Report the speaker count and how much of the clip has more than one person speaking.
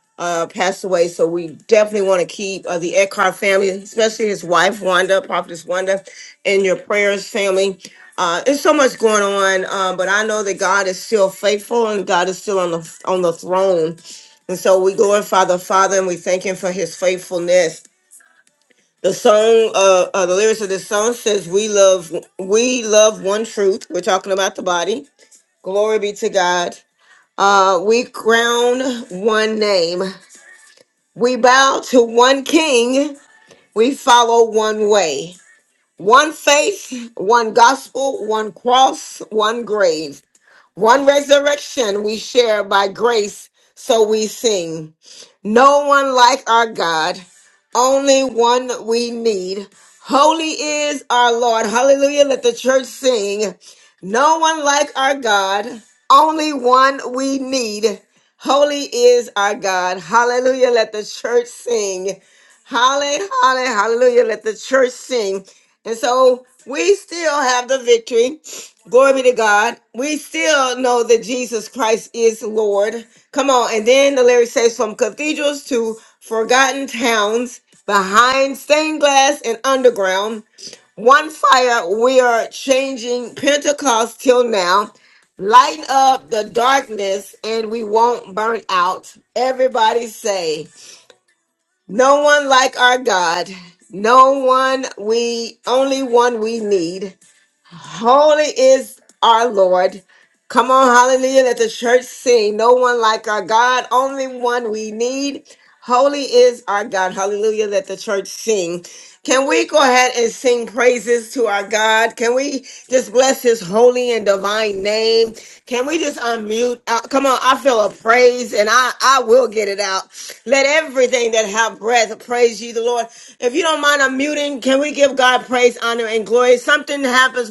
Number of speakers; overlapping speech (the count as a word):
one, no overlap